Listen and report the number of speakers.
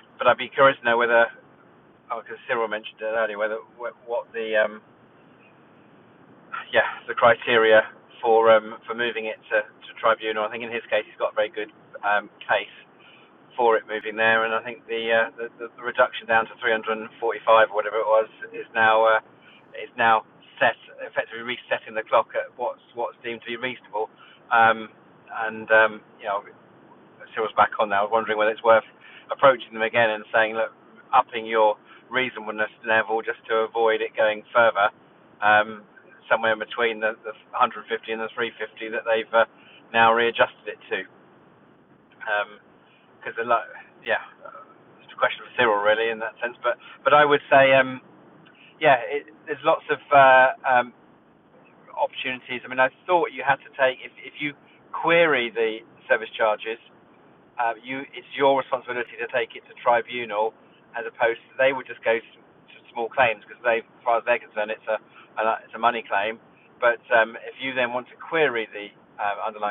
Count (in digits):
1